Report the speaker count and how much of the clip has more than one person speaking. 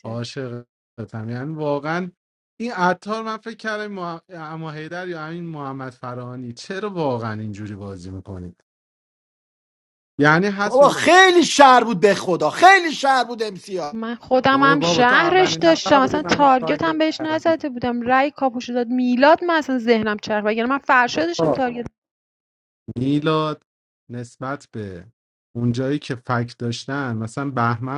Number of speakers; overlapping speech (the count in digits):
3, about 13%